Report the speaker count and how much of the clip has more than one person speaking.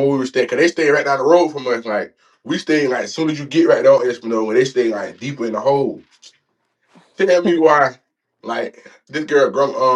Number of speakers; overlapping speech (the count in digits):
1, no overlap